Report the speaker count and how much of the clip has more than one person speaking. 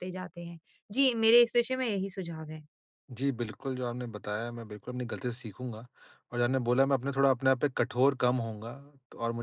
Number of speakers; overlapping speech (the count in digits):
2, no overlap